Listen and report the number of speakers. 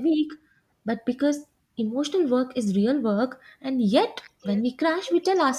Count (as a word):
one